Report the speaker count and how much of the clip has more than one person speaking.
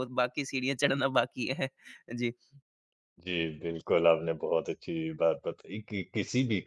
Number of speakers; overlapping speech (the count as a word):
two, no overlap